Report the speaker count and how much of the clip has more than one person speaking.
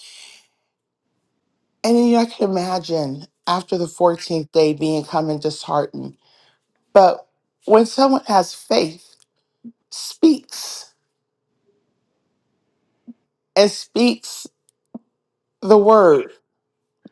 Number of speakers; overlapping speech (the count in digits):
1, no overlap